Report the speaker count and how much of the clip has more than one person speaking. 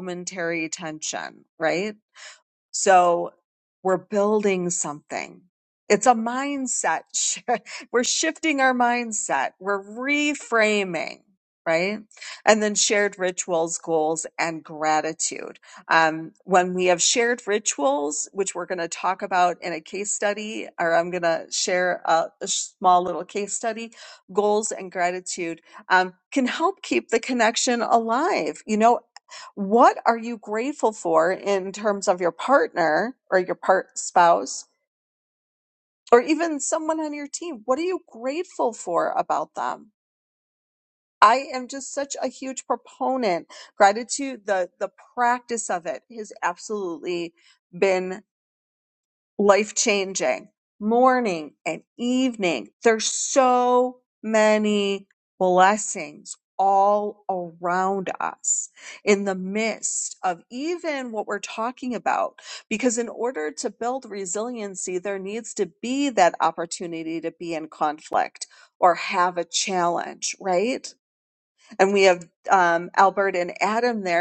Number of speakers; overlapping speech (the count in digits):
1, no overlap